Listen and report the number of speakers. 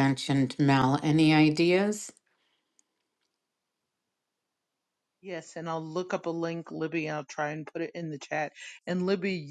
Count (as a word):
two